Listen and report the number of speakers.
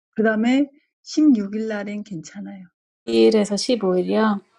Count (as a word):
two